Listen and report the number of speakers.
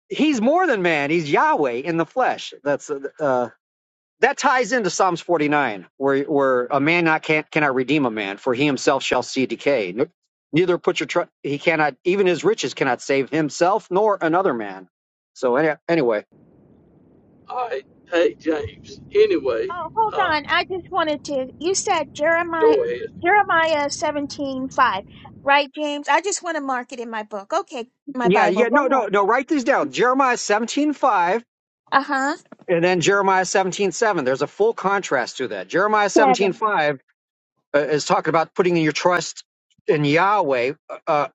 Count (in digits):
3